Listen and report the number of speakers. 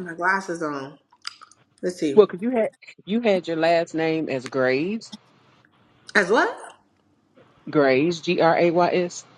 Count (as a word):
two